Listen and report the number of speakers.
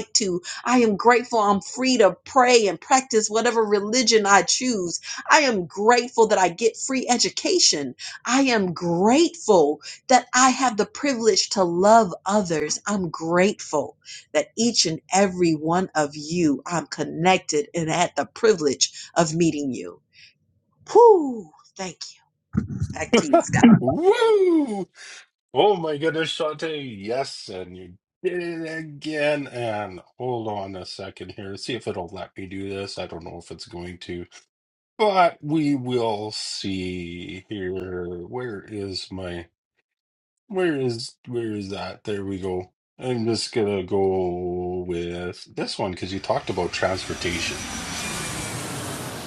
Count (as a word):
two